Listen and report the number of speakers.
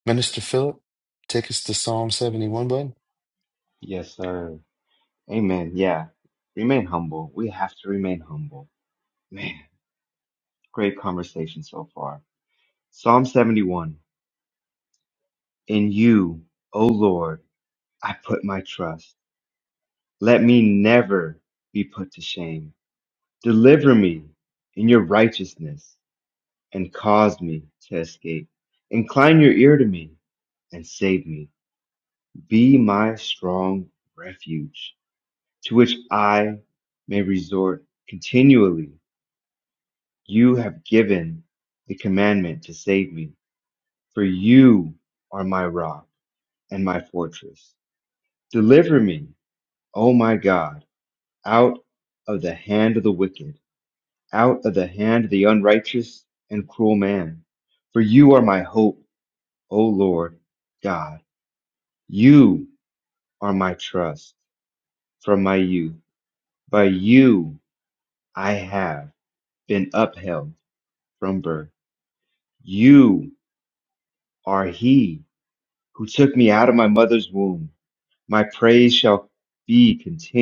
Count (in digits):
2